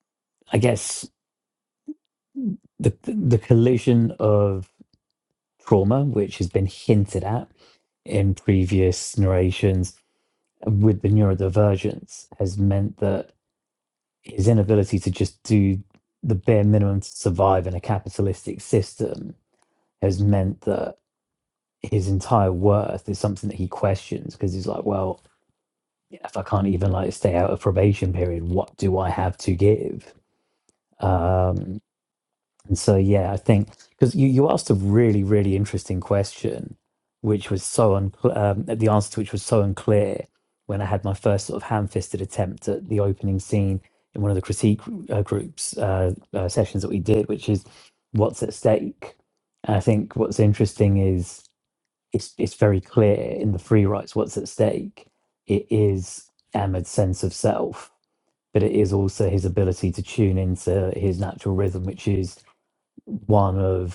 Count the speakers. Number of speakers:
one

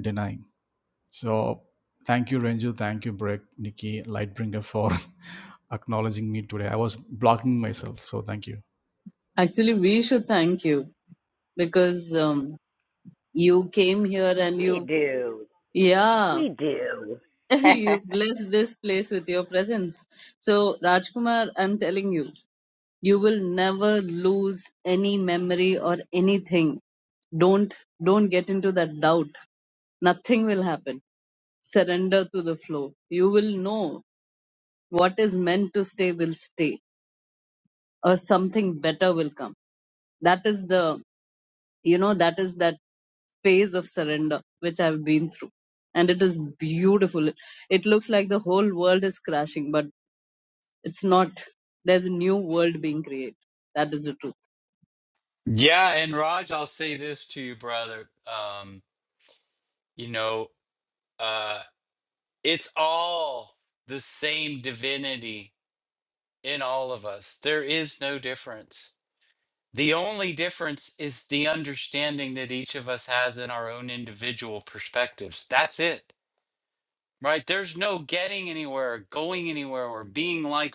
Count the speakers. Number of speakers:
four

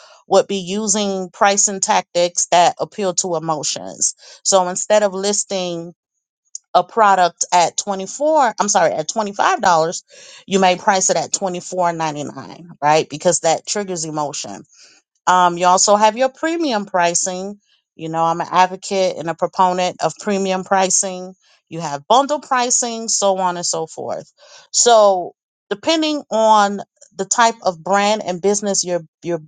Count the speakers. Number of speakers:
one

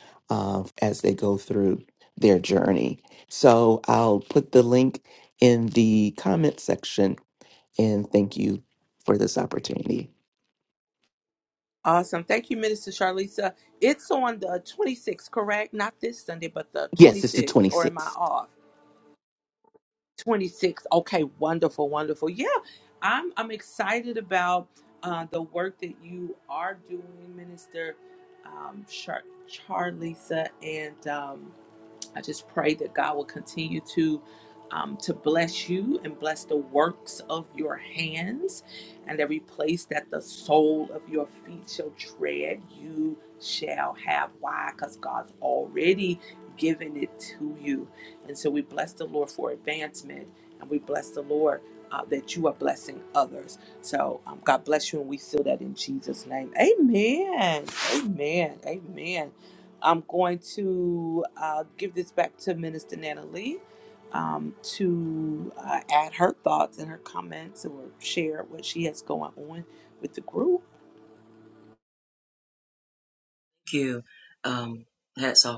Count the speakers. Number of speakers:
three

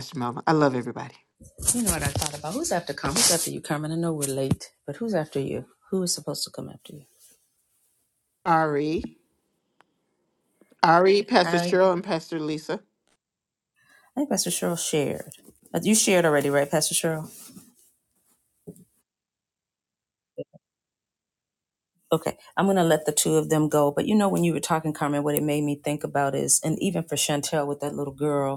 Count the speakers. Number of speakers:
two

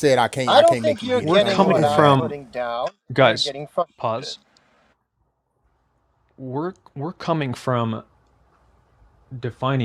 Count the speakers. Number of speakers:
three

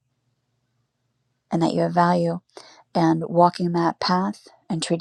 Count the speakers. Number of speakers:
one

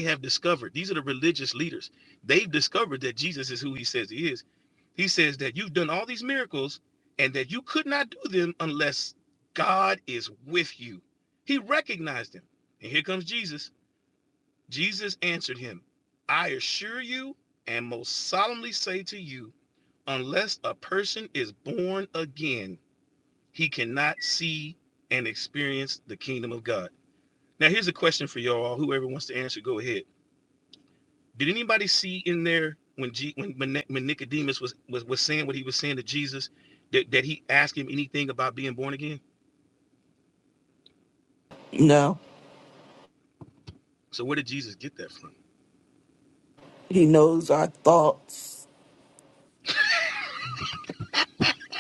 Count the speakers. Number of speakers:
two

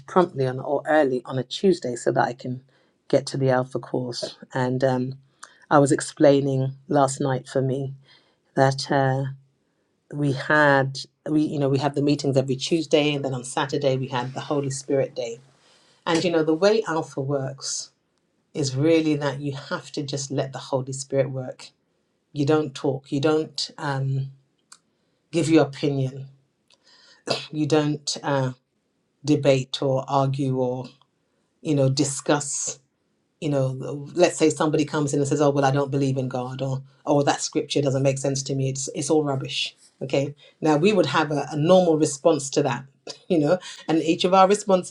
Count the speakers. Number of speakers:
one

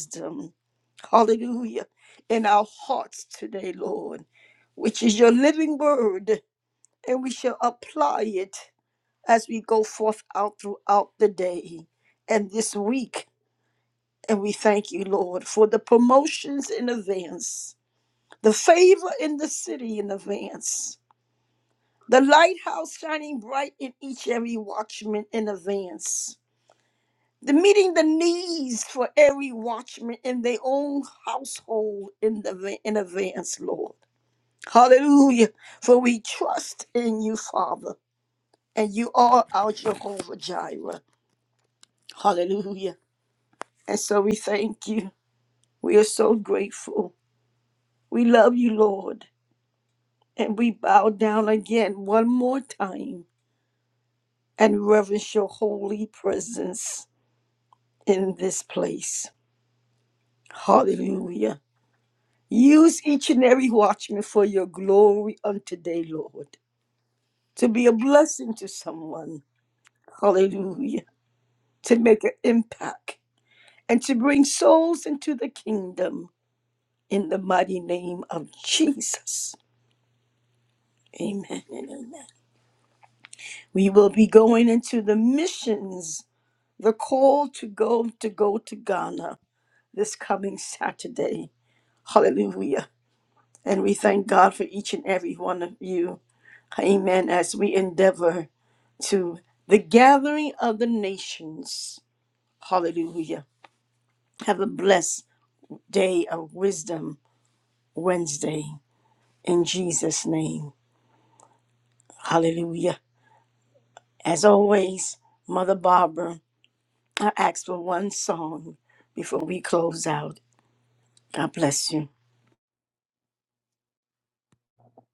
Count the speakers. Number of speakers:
one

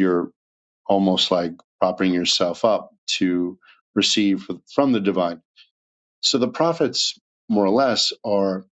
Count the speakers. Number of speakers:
one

